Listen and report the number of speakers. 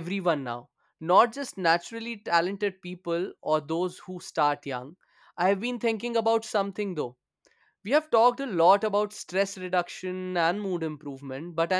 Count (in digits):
1